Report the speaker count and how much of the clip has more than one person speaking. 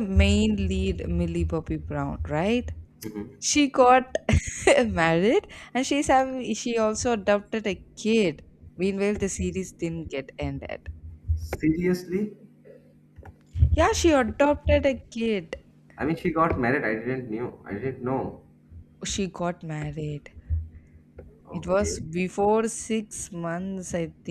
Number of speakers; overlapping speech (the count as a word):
two, about 2%